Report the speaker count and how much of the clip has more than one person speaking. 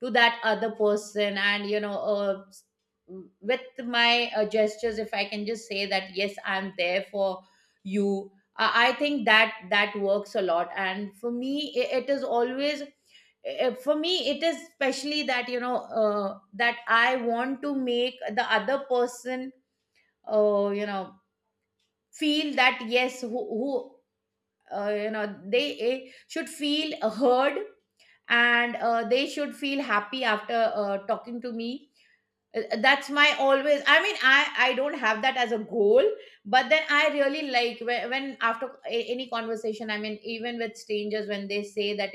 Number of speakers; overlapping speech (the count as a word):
one, no overlap